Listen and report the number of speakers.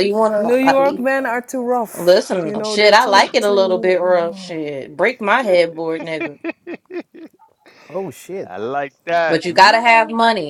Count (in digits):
3